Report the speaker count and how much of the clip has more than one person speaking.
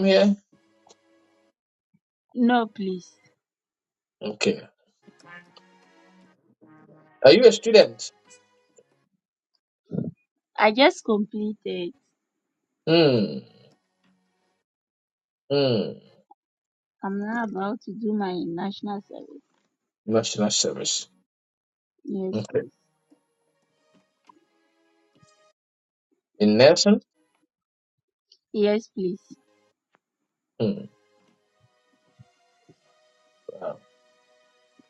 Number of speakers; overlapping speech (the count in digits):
2, about 1%